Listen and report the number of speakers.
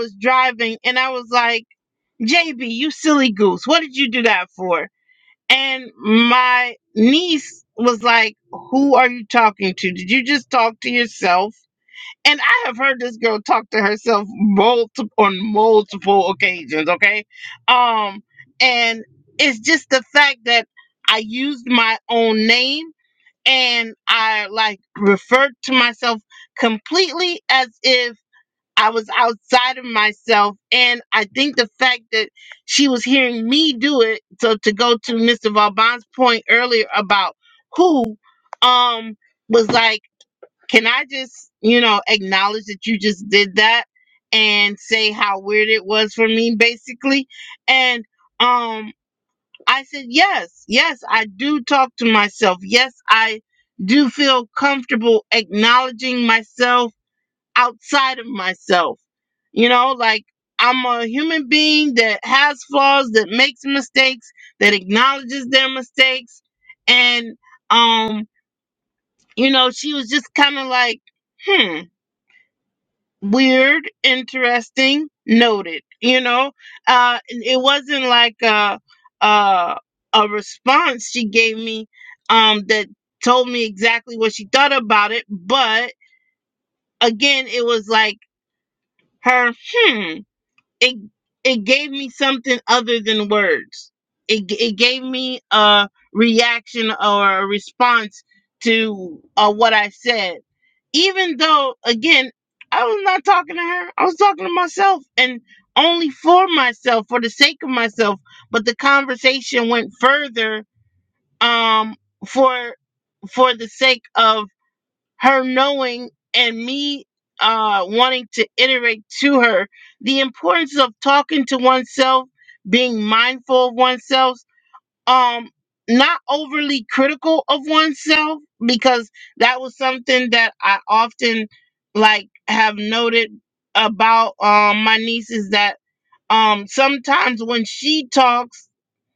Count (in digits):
1